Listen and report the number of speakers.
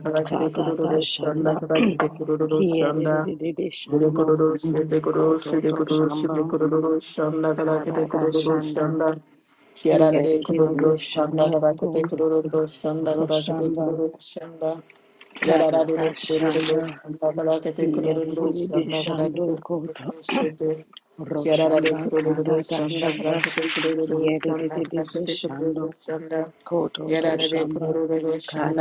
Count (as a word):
two